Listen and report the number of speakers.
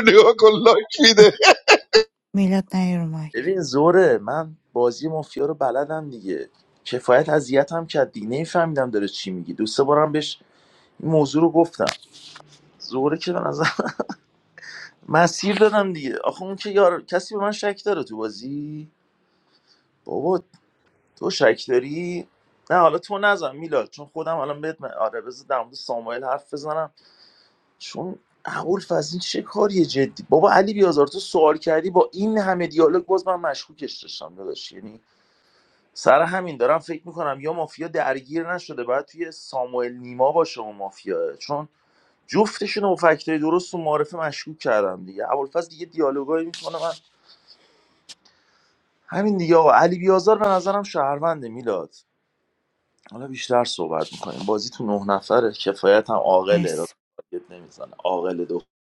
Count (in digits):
3